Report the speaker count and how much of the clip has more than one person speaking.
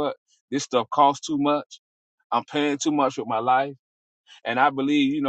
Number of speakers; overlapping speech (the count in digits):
1, no overlap